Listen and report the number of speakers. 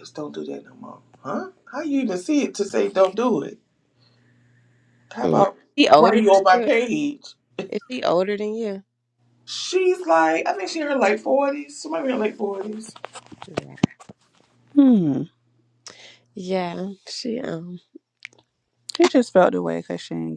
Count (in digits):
3